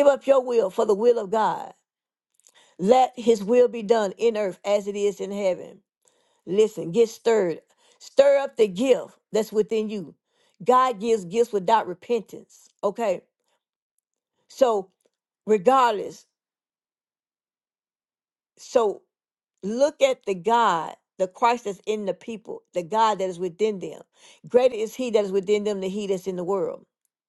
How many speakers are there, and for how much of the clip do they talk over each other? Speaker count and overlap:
one, no overlap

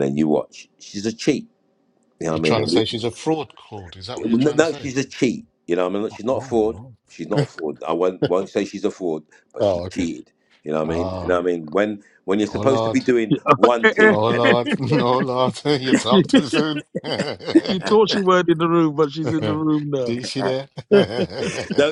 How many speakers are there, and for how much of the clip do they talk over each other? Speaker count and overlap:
three, about 18%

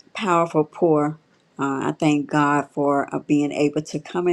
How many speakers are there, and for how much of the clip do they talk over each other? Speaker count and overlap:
one, no overlap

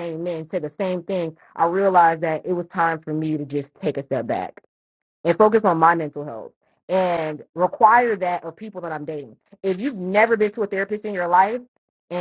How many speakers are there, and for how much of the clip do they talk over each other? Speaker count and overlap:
one, no overlap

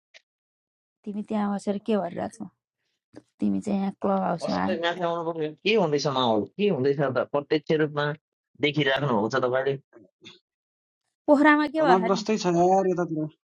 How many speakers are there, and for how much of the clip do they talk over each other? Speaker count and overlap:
three, about 6%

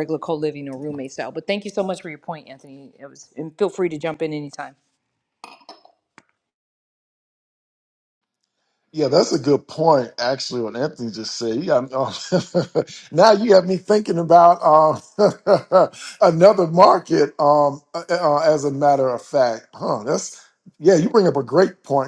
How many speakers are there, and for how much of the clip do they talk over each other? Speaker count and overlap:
two, no overlap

